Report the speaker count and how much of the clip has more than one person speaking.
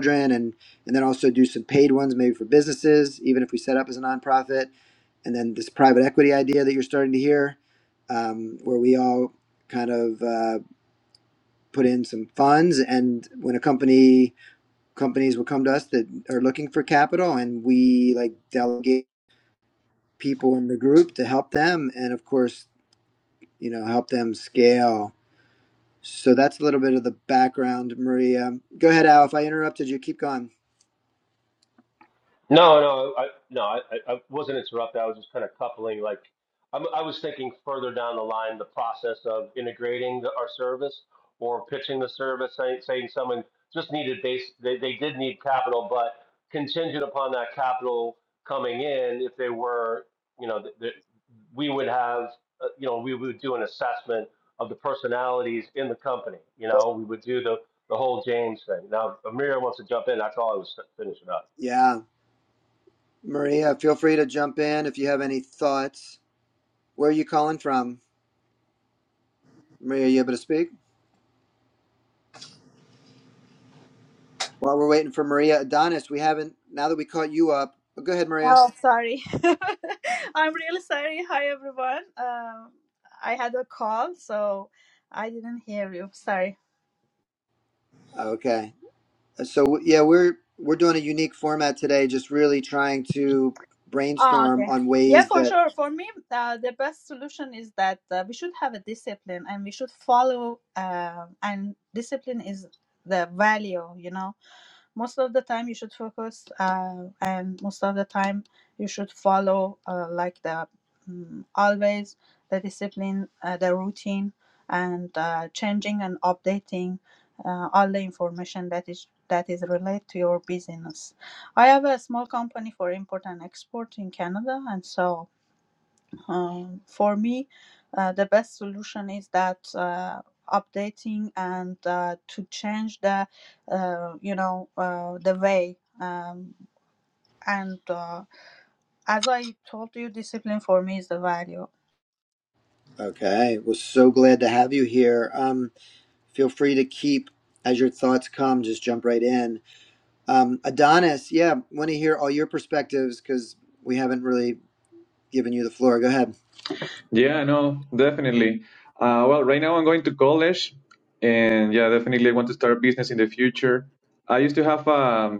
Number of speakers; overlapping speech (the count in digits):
4, about 1%